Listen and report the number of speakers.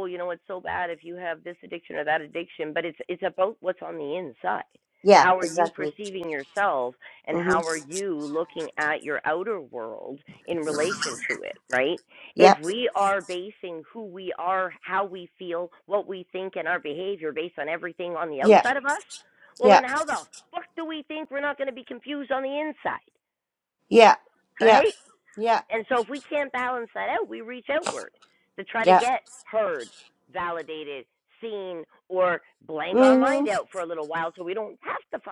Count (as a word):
two